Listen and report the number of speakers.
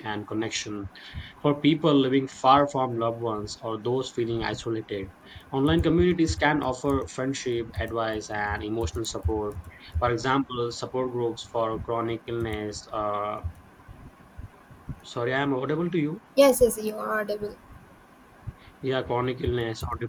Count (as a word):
two